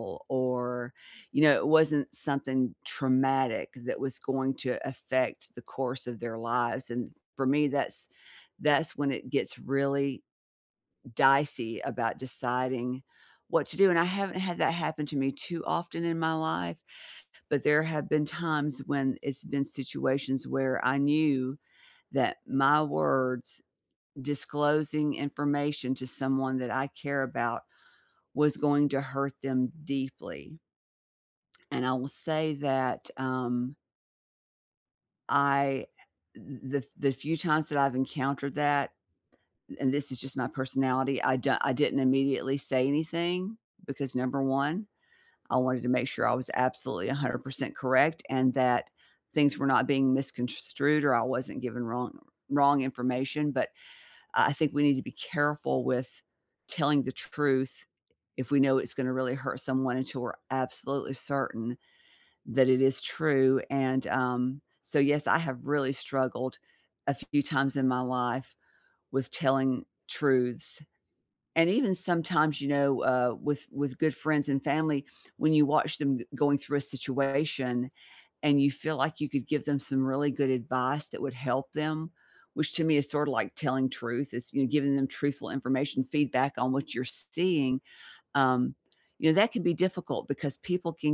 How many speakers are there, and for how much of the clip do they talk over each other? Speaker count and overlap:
1, no overlap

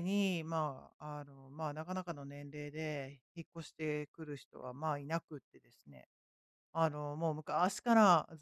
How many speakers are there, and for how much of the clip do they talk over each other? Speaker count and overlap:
1, no overlap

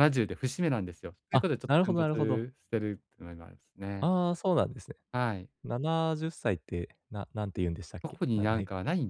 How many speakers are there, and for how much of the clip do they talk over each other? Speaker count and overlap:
2, about 19%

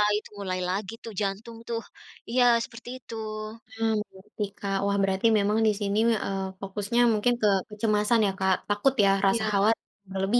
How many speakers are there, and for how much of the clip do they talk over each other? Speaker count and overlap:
2, about 2%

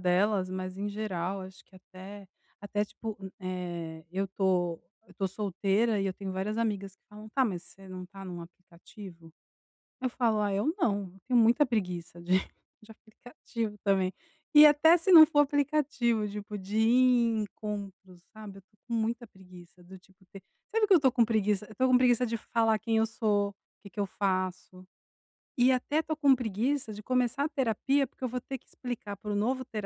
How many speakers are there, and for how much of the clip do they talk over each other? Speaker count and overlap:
1, no overlap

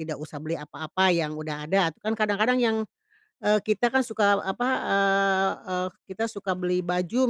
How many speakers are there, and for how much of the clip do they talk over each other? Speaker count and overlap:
1, no overlap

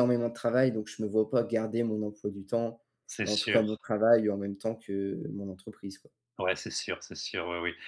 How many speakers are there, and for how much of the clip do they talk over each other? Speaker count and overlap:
2, about 6%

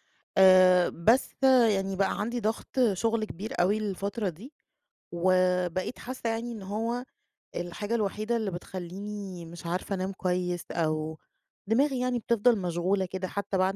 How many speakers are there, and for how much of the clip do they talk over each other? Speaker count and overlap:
1, no overlap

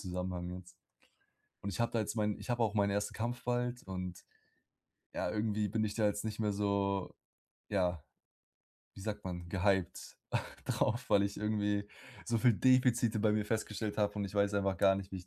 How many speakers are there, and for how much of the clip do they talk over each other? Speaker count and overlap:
1, no overlap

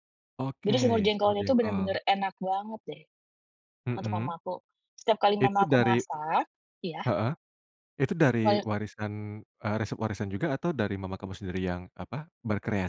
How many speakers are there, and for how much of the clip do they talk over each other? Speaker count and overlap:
2, about 14%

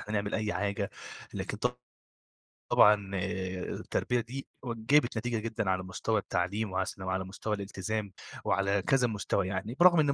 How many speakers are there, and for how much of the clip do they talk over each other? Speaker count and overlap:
1, no overlap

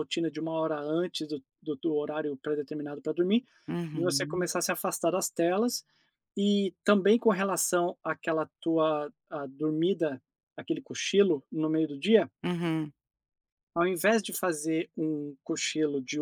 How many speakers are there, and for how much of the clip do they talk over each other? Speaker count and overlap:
2, about 3%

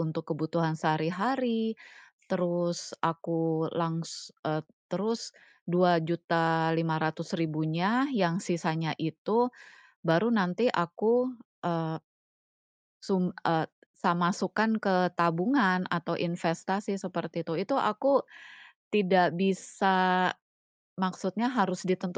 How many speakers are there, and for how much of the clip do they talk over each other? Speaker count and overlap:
1, no overlap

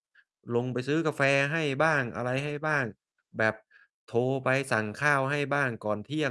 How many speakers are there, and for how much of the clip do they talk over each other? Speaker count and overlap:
1, no overlap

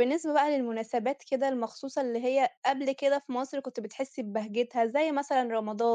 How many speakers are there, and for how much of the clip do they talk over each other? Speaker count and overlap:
1, no overlap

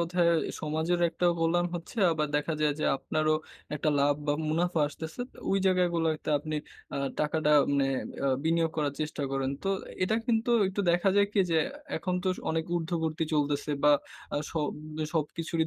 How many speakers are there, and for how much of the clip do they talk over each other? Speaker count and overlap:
1, no overlap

